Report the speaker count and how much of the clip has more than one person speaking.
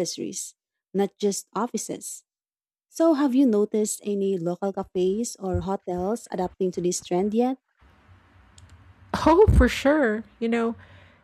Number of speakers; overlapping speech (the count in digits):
2, no overlap